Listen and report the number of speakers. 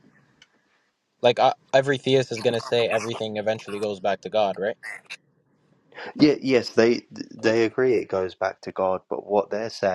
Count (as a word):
two